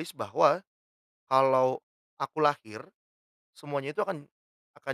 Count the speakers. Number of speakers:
1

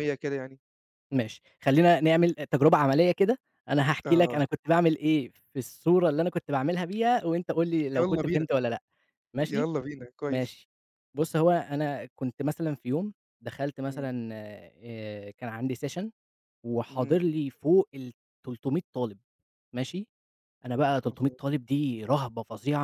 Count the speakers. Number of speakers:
2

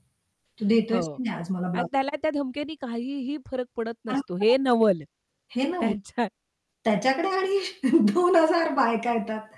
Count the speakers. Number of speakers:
2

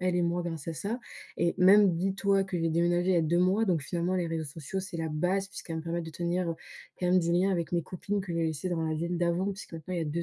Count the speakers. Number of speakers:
1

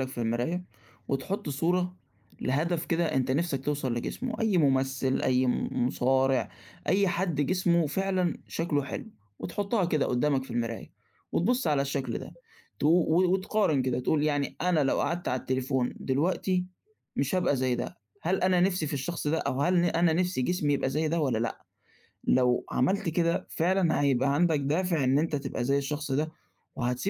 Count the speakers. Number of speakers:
1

